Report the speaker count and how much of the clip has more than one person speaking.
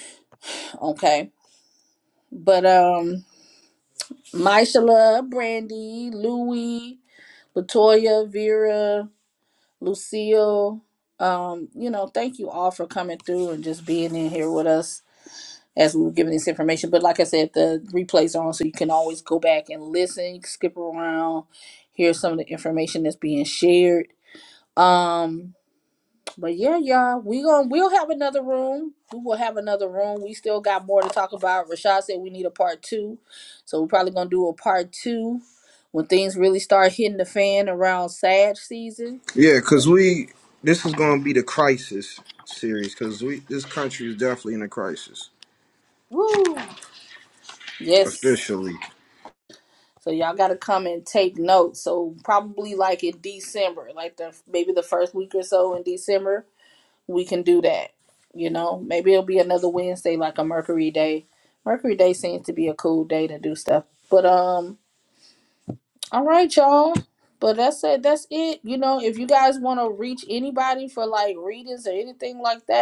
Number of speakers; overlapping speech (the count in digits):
2, under 1%